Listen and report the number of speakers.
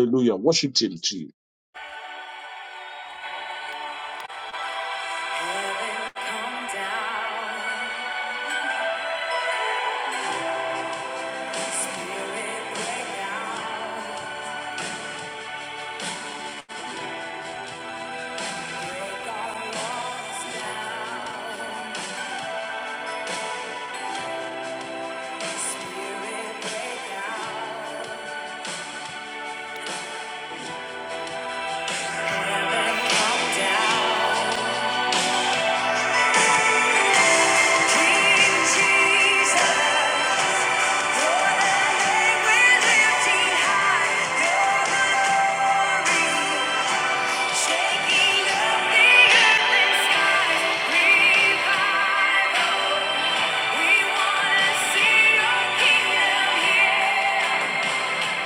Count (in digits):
2